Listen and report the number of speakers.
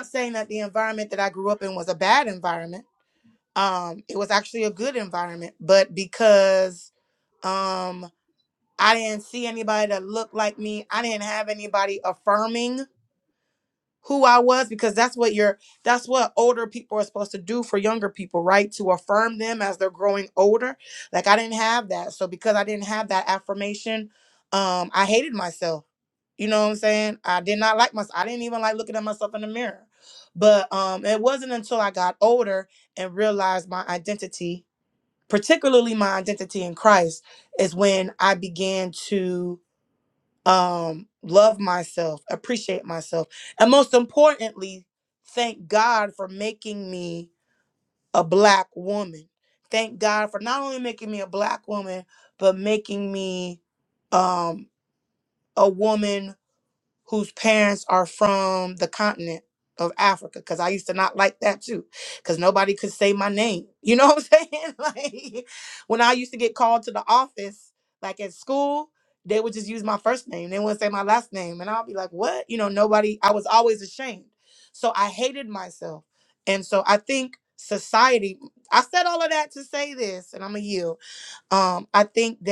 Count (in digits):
1